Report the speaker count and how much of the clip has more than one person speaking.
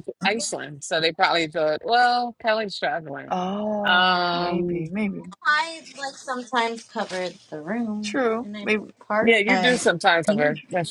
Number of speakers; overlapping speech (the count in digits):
3, about 25%